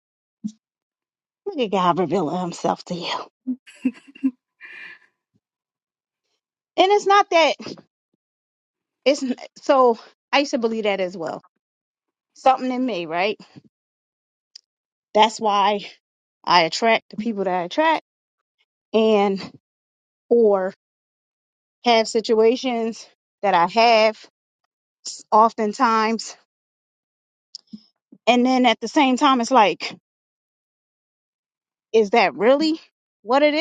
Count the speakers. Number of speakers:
one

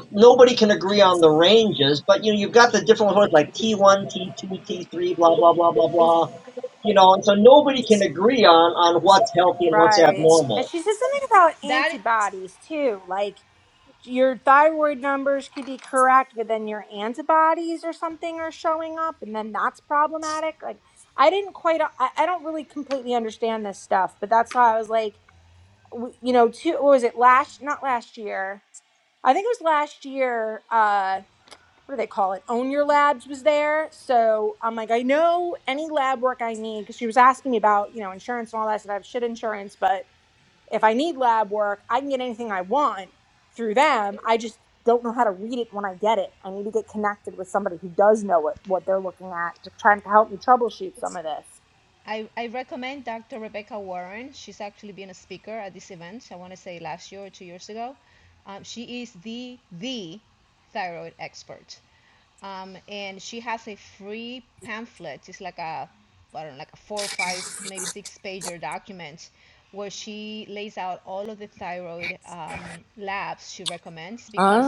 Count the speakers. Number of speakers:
three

